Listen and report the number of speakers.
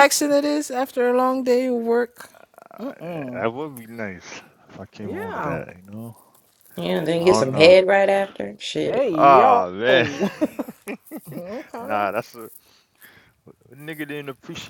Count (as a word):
three